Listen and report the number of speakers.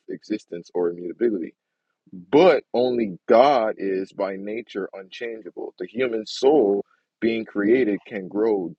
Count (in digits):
1